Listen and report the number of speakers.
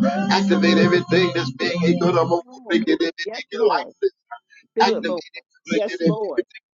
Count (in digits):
2